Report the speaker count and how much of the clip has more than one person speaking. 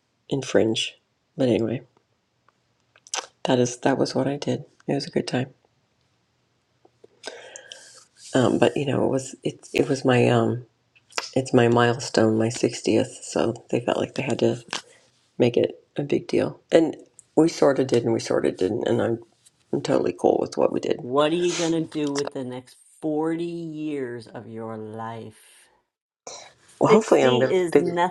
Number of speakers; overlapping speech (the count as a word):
two, about 4%